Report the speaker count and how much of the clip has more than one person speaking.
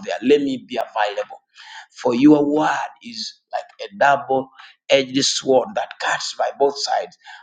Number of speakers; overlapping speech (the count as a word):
one, no overlap